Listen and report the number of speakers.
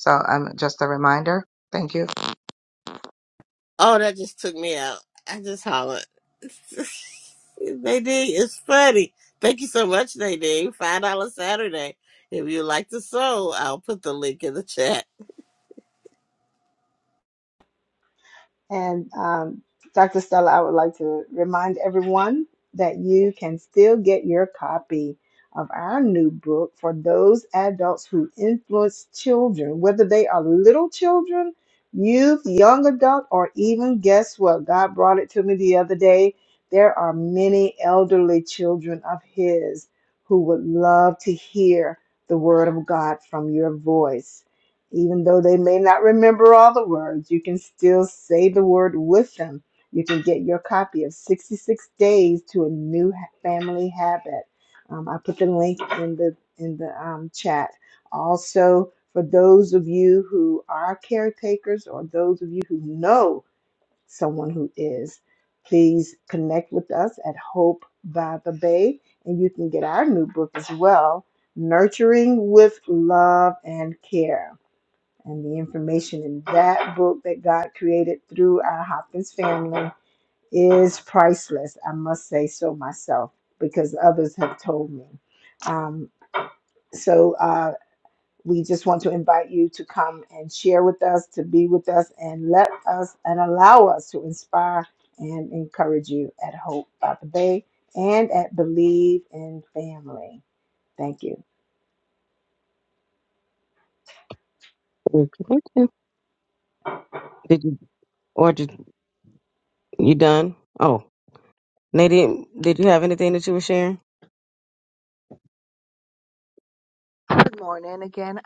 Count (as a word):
four